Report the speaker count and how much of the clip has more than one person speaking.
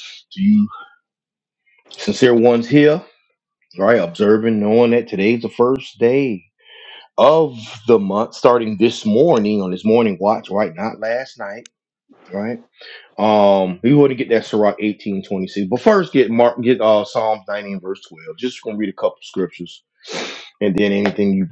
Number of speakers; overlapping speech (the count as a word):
one, no overlap